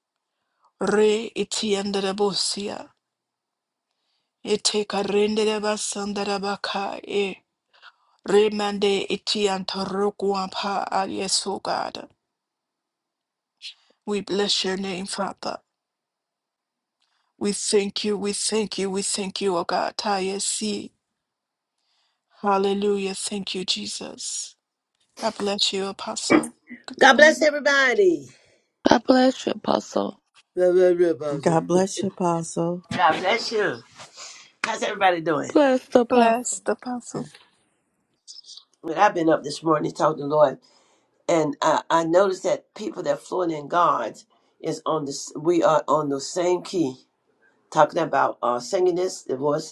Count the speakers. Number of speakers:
4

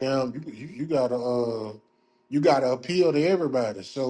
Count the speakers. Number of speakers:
1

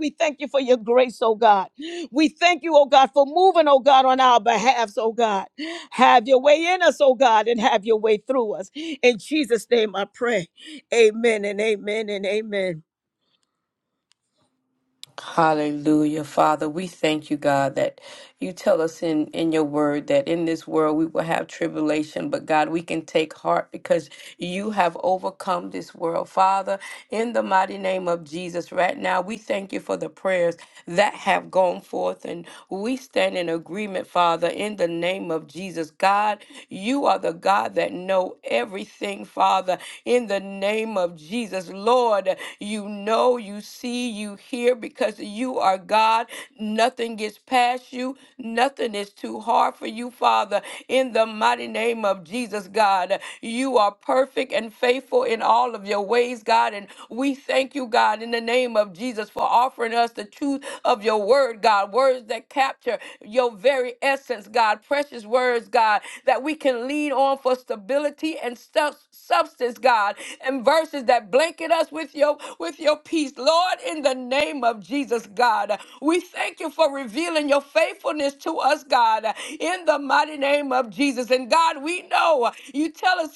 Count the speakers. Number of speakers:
2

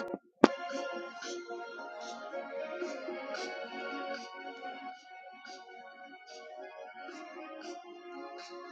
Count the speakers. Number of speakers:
0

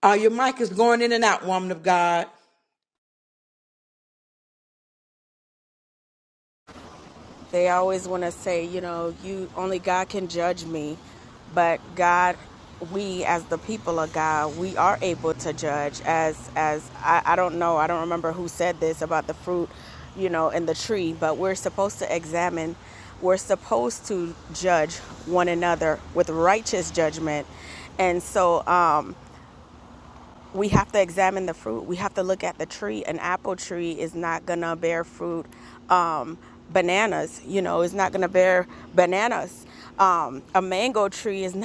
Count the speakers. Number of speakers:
2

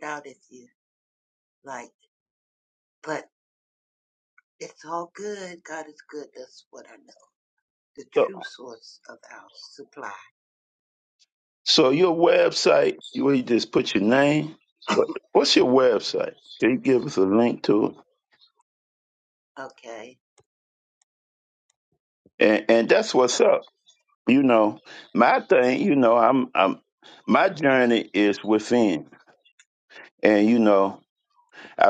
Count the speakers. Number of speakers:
2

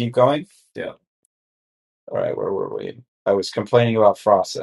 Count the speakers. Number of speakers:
1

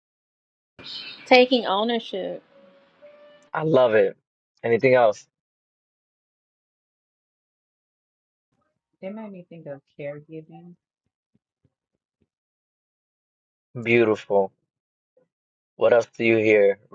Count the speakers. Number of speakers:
3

